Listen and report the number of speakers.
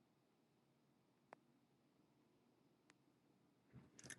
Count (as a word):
zero